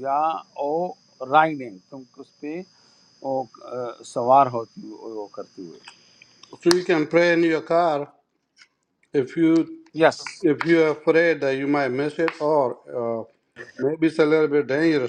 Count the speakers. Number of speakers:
two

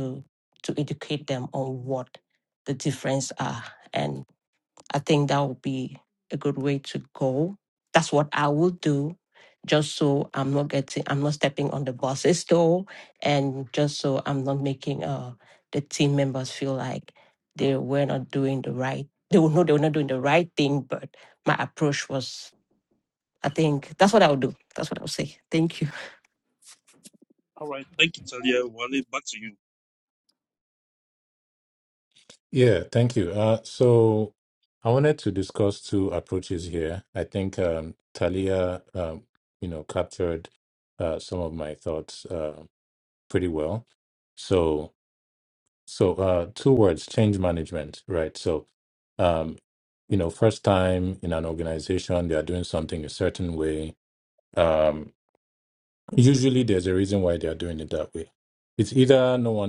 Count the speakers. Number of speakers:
three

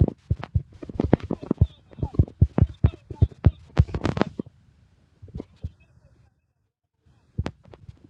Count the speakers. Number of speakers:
zero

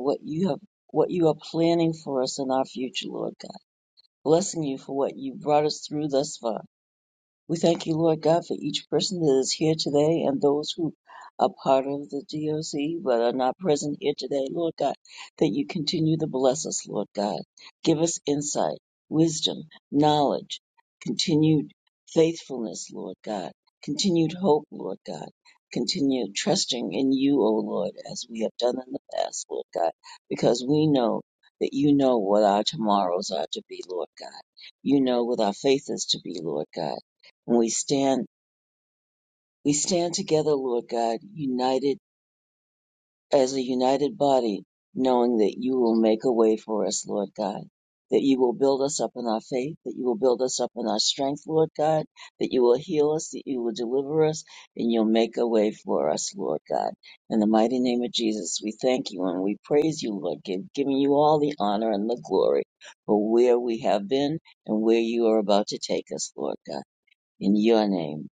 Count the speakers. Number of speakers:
one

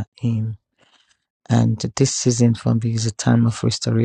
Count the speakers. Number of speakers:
one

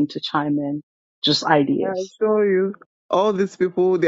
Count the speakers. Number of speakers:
two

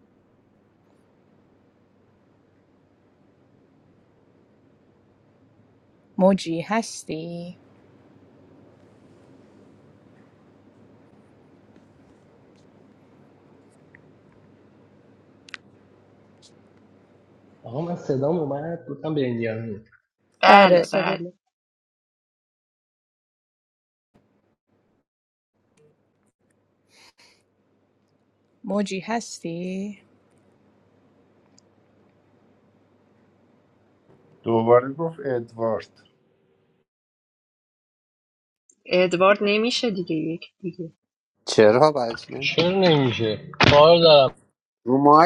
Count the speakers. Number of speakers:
five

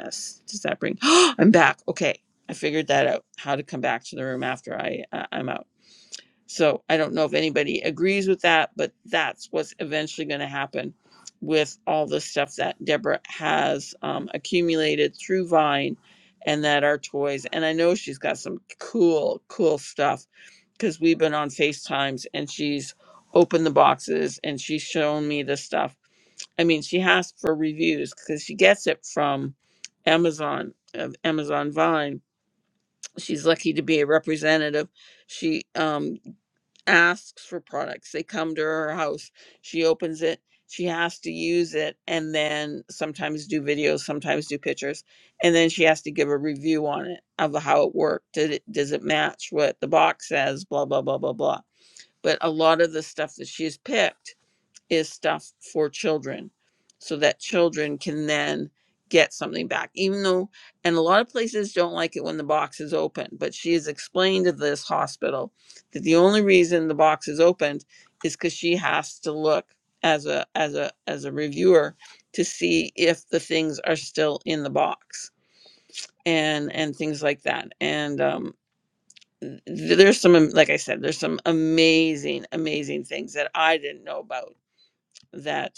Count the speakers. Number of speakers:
one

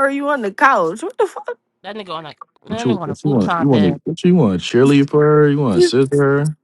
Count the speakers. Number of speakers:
three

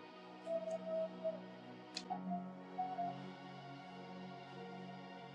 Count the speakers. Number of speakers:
zero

